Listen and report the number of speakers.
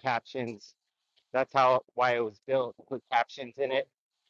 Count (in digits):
1